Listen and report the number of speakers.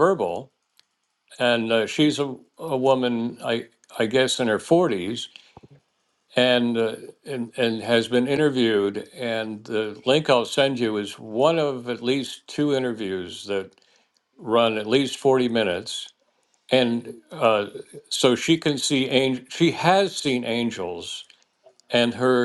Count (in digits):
1